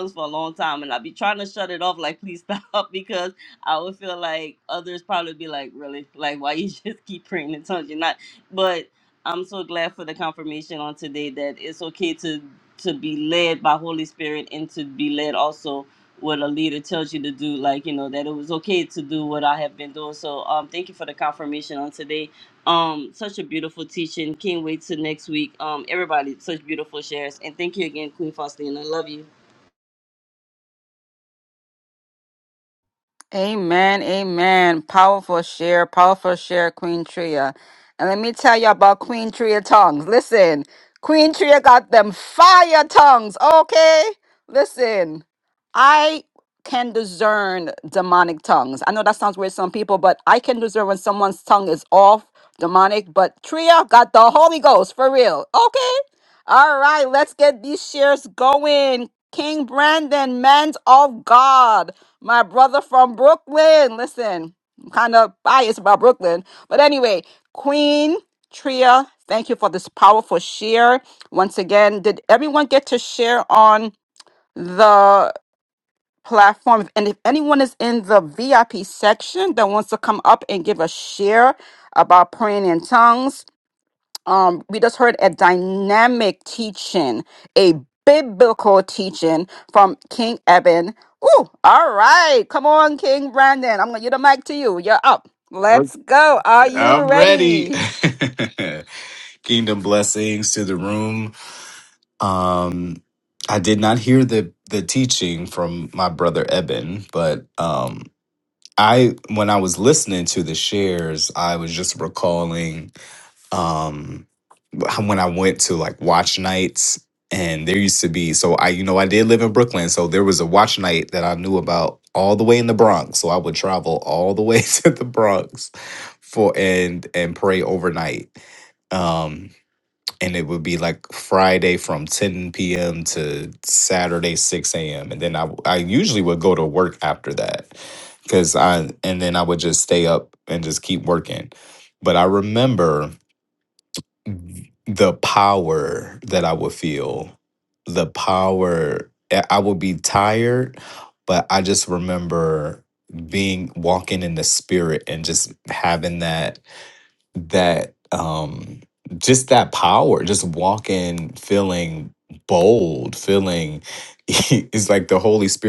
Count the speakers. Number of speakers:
three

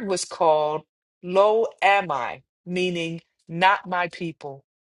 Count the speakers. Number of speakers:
one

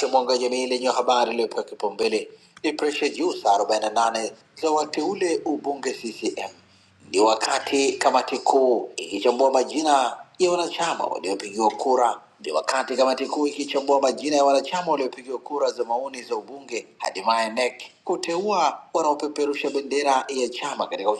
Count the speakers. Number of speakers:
one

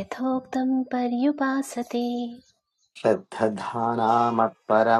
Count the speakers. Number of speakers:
two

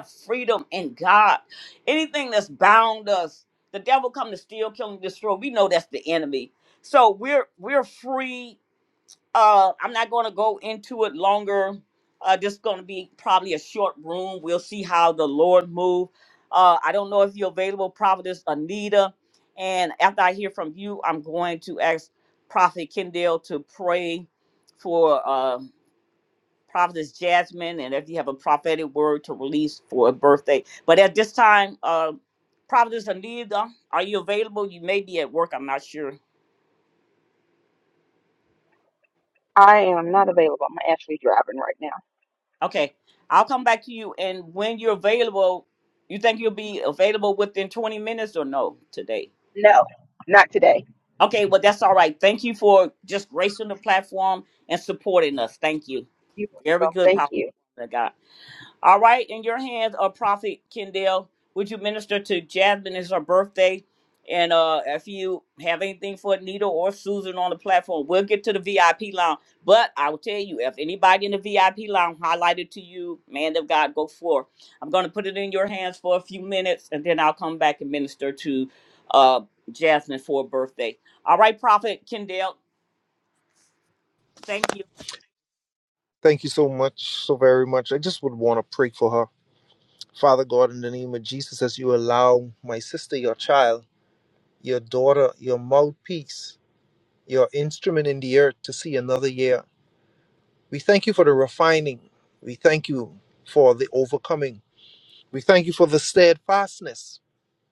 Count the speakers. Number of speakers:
three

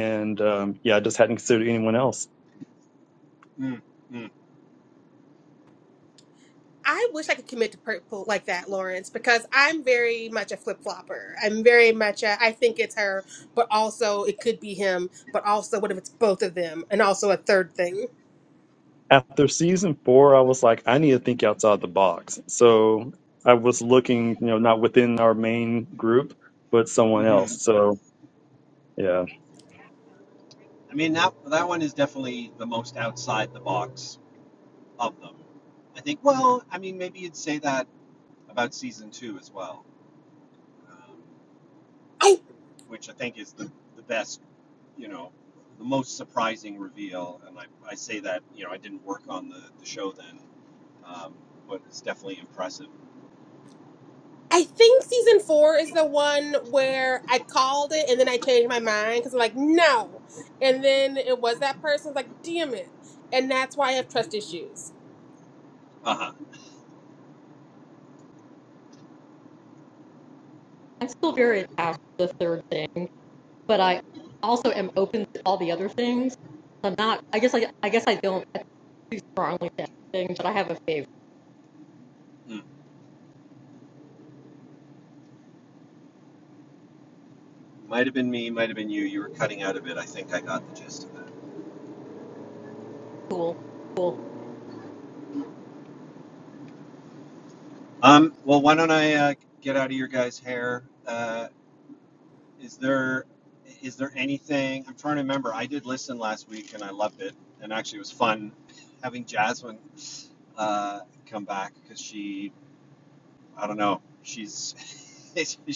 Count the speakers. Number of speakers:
four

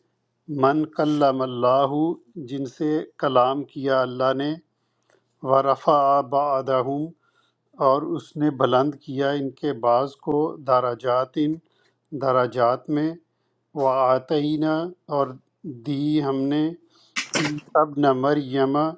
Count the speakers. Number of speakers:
one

